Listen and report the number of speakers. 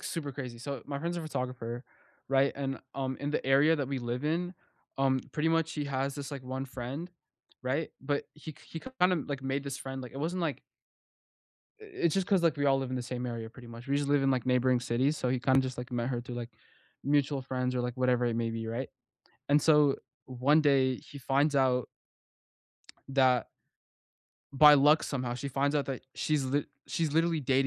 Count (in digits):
1